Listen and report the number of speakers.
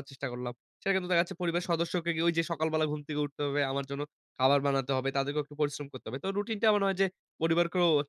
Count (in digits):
1